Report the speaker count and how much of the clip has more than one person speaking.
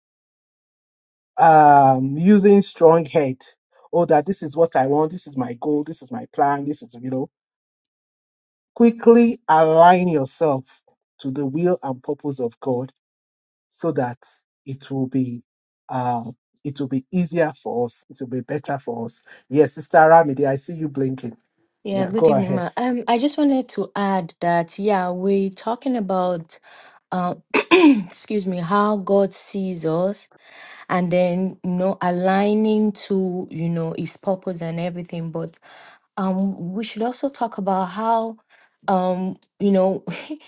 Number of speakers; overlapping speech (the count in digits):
2, about 2%